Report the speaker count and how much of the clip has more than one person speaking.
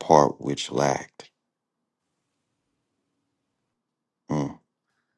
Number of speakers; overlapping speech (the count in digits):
1, no overlap